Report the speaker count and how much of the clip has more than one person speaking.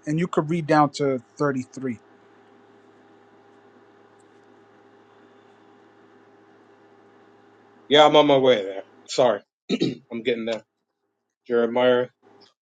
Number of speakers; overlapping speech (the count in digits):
2, no overlap